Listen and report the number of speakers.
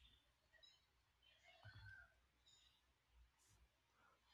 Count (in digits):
0